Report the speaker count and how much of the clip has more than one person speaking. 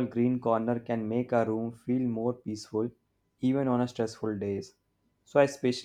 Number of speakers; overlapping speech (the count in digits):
1, no overlap